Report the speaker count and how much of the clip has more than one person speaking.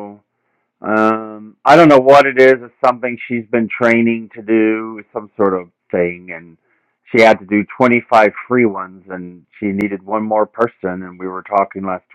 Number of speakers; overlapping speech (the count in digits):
1, no overlap